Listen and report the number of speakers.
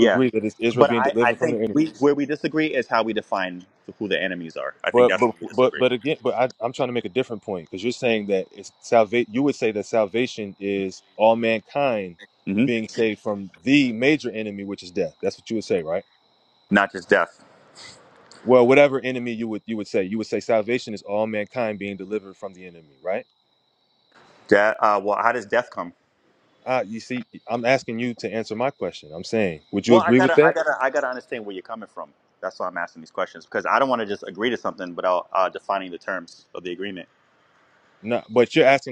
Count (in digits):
2